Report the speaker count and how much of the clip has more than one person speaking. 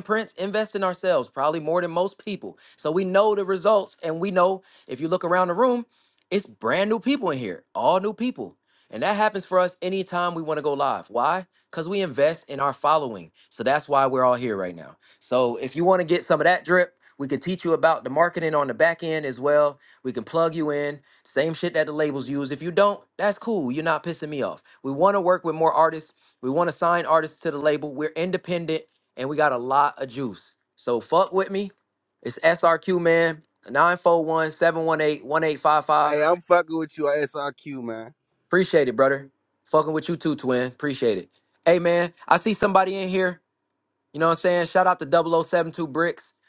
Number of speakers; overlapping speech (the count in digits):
2, under 1%